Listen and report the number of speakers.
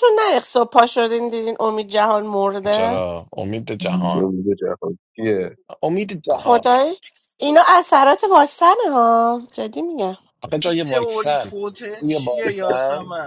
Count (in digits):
4